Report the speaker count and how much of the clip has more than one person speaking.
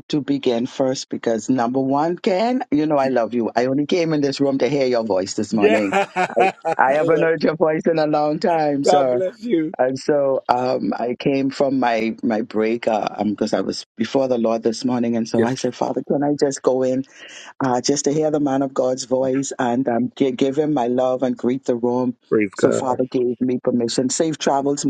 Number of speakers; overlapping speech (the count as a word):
two, about 7%